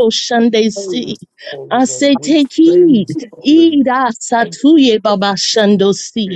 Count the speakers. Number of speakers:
two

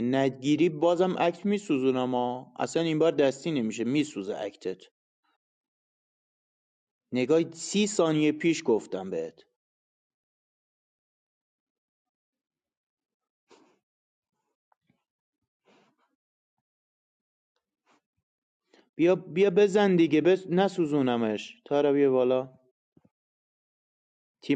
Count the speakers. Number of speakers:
one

